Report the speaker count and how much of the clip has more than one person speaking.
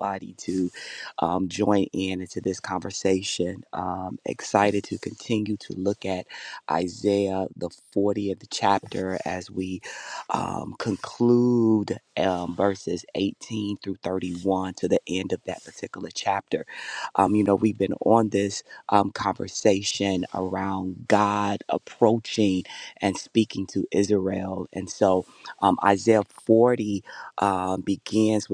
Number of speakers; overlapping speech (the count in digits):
1, no overlap